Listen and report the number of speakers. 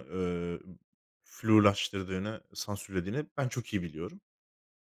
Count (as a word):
one